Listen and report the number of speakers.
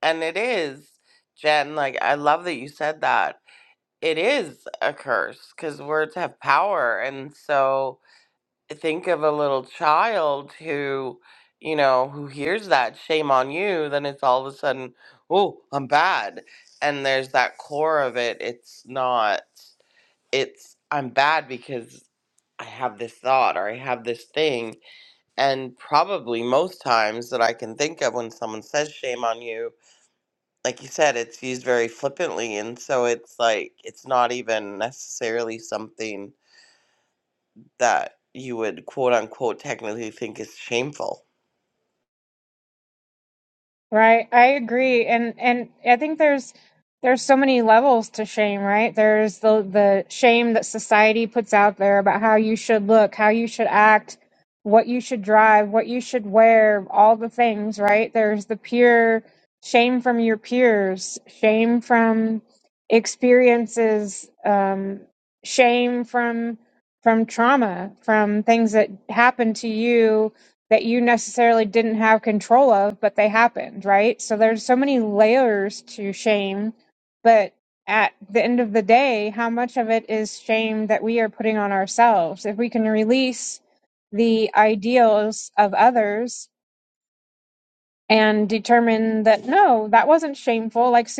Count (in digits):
2